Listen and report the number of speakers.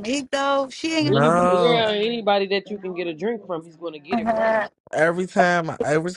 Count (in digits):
3